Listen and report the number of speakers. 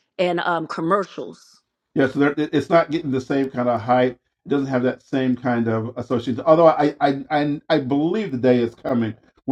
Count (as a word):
two